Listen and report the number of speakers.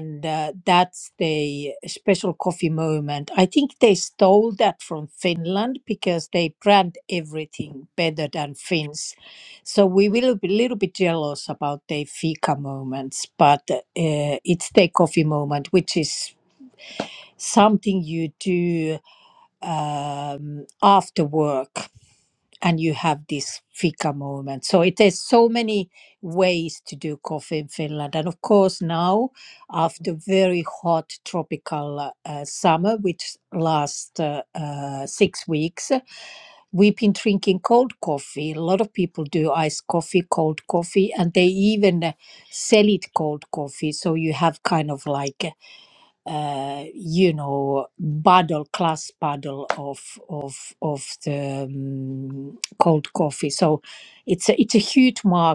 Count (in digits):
1